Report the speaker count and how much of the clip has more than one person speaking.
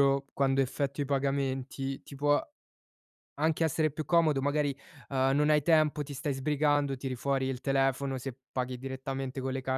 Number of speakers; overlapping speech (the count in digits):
1, no overlap